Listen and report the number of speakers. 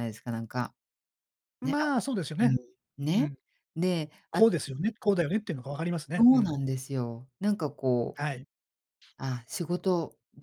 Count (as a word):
two